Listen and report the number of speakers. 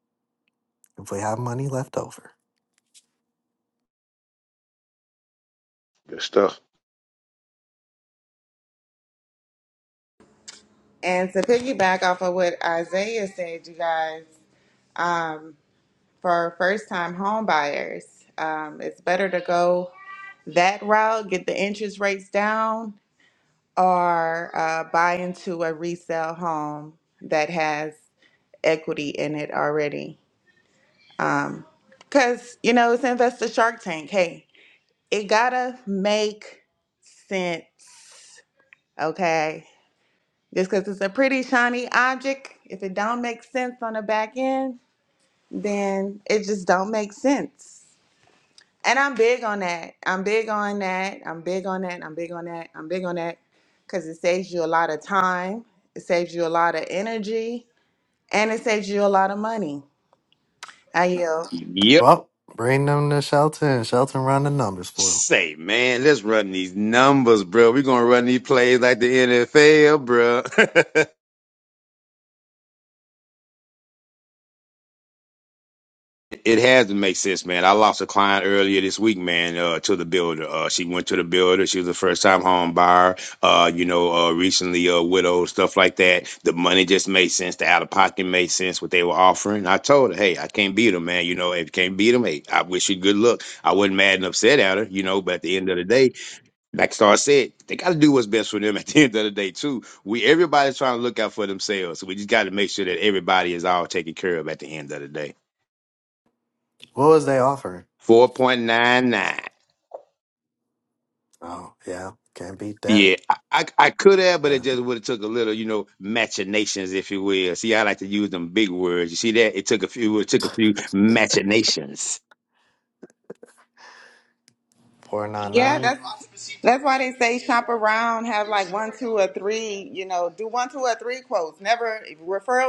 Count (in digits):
3